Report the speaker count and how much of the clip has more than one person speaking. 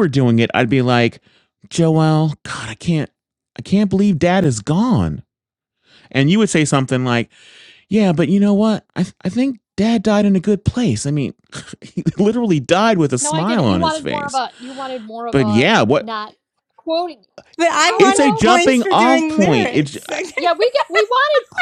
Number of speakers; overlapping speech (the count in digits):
3, about 18%